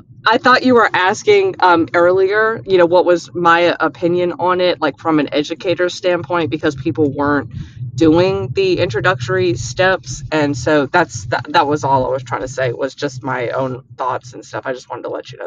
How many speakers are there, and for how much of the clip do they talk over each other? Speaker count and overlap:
1, no overlap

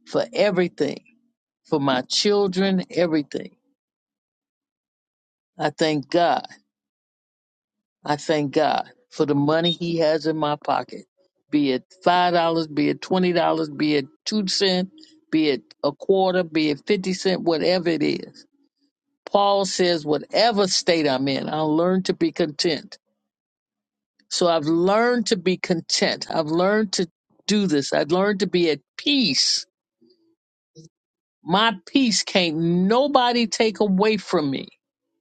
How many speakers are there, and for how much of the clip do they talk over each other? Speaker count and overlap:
1, no overlap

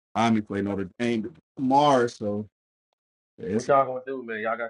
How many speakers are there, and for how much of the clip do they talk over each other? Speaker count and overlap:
2, no overlap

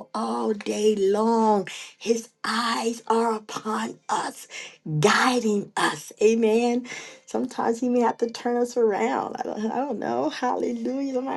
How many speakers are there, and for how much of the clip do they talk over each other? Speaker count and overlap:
1, no overlap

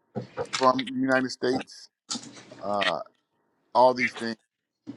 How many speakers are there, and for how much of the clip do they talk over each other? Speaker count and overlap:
1, no overlap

